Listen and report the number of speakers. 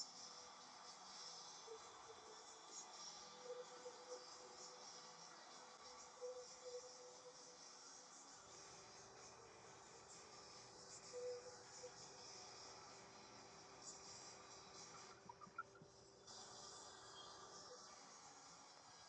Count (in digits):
0